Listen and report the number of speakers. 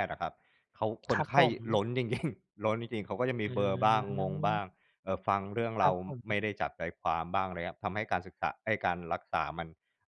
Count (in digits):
2